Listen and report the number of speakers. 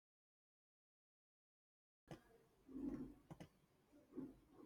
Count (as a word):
zero